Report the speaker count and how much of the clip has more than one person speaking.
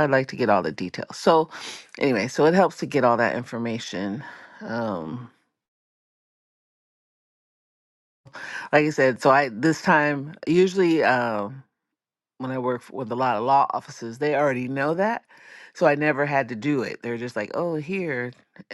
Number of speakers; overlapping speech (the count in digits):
1, no overlap